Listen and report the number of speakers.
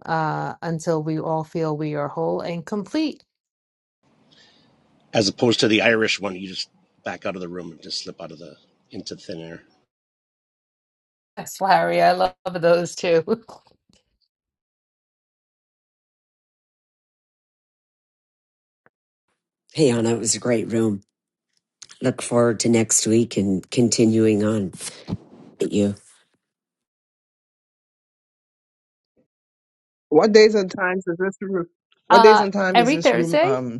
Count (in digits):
4